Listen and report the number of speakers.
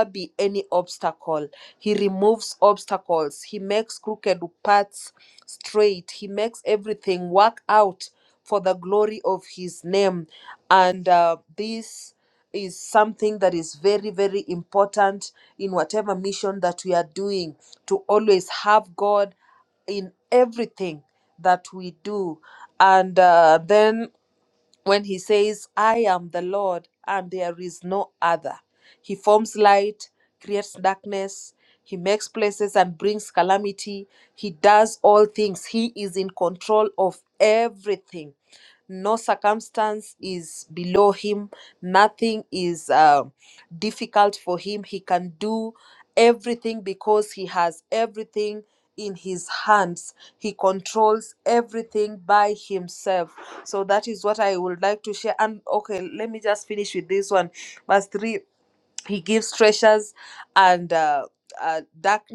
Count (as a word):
one